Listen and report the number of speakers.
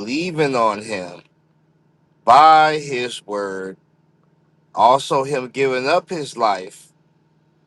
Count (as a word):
one